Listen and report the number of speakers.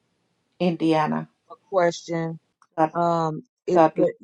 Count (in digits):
2